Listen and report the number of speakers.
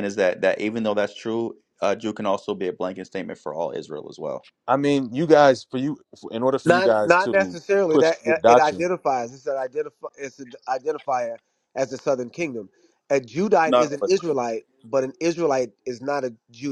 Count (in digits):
3